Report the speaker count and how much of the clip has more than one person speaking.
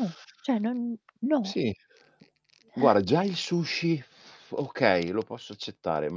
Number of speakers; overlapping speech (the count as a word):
two, about 5%